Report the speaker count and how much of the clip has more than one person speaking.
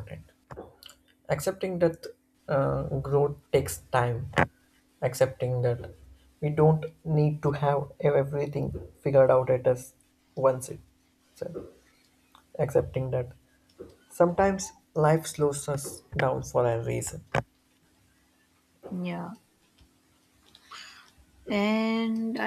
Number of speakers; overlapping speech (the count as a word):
two, no overlap